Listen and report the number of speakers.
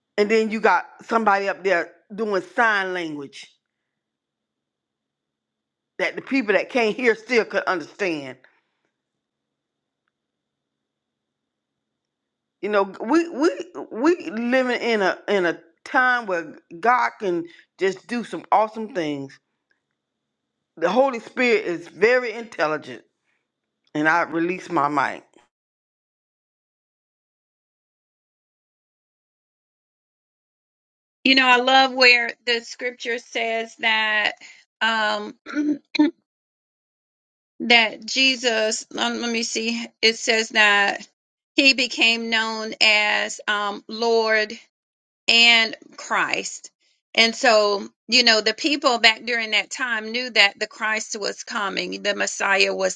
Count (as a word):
two